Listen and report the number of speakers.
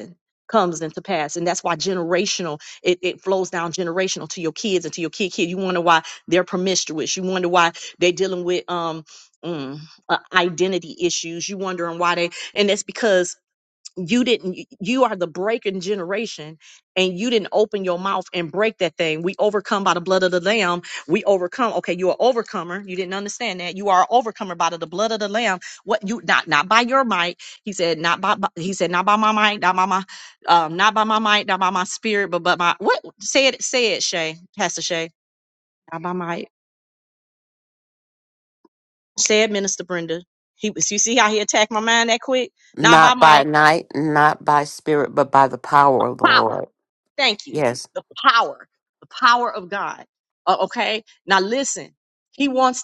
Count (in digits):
2